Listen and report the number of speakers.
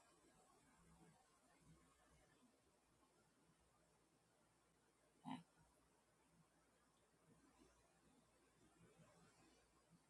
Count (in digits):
0